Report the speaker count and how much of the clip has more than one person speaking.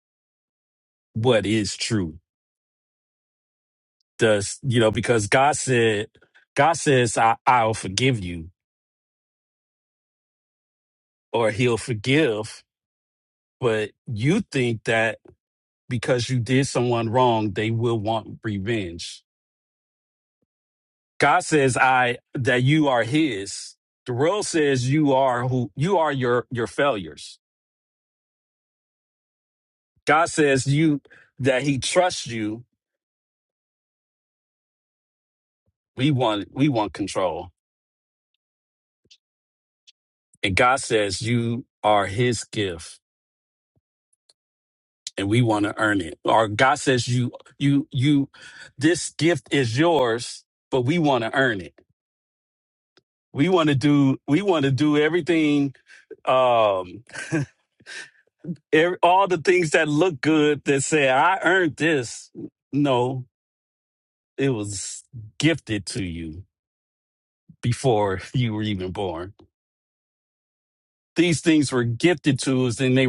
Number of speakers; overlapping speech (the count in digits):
1, no overlap